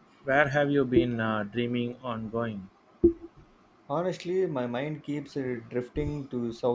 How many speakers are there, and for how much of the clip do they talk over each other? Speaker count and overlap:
2, no overlap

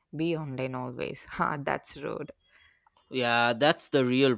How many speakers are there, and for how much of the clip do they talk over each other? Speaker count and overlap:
2, no overlap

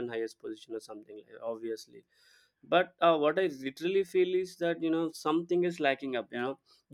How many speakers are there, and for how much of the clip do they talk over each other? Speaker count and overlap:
1, no overlap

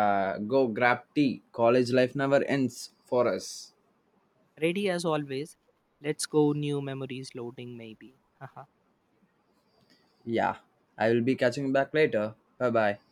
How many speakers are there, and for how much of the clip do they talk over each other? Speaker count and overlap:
2, no overlap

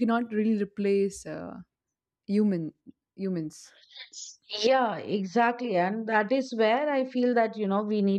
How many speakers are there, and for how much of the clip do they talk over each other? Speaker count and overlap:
2, no overlap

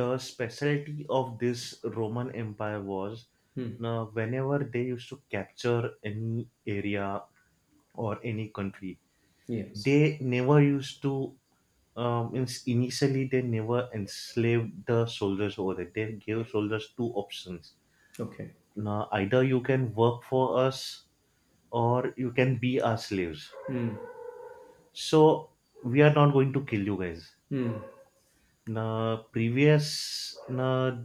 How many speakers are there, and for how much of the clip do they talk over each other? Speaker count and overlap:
2, no overlap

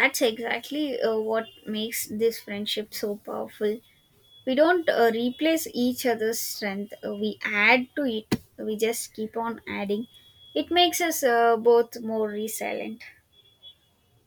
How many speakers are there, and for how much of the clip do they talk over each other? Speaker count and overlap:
1, no overlap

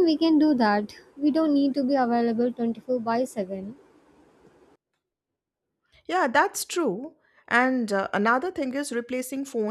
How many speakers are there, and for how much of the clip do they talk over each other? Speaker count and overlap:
2, no overlap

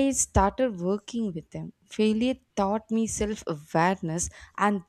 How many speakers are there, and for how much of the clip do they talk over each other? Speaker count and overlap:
1, no overlap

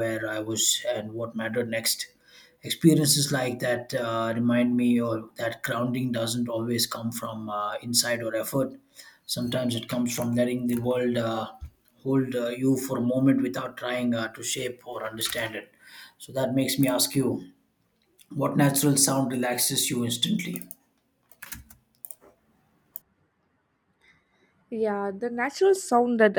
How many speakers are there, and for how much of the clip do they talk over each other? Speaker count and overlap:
2, no overlap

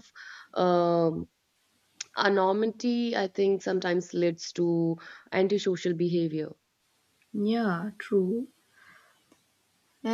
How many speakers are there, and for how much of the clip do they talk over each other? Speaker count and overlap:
2, no overlap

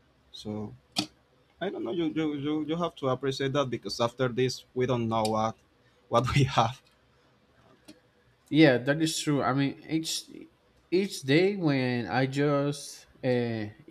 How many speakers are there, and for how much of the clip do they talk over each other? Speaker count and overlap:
2, no overlap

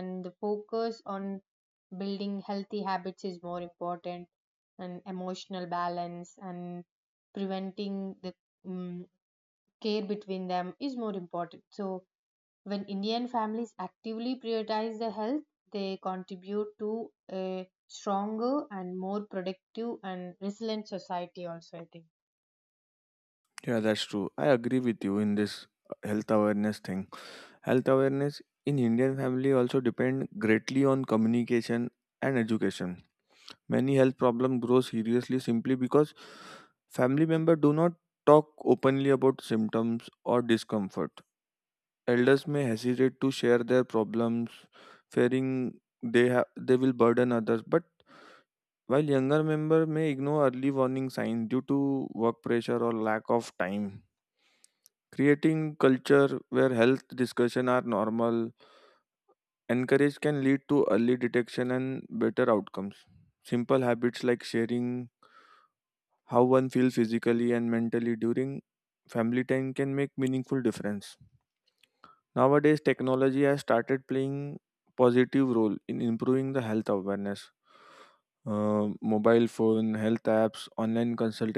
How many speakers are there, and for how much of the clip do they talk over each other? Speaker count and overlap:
2, no overlap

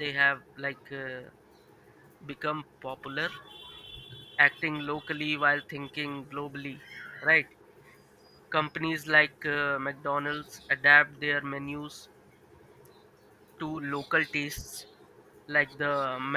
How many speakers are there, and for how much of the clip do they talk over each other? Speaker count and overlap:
1, no overlap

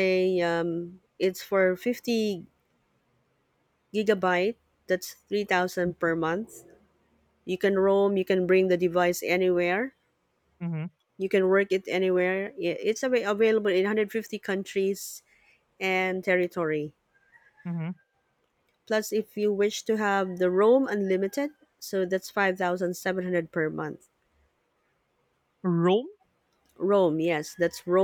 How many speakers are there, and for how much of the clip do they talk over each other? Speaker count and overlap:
2, no overlap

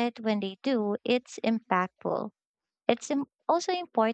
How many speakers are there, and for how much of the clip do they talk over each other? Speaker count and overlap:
1, no overlap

